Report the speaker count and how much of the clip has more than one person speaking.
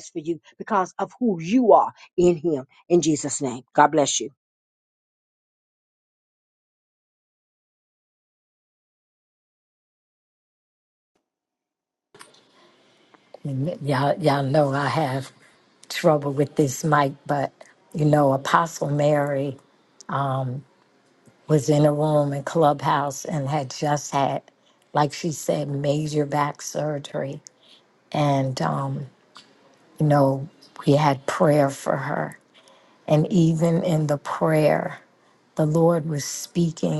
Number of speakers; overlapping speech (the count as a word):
two, no overlap